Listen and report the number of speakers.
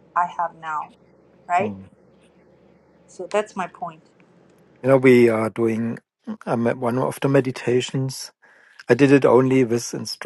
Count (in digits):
2